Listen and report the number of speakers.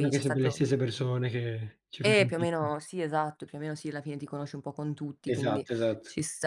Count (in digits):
2